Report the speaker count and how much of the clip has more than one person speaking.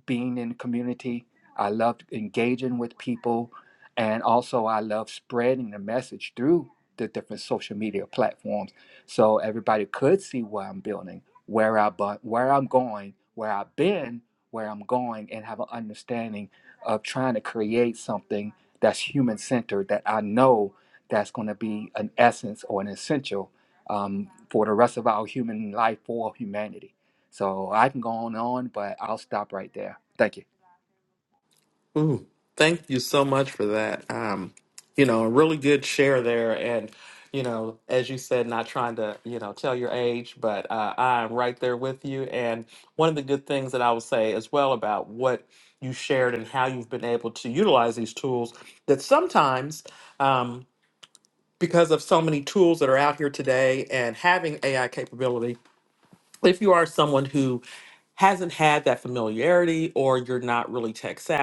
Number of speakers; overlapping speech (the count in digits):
2, no overlap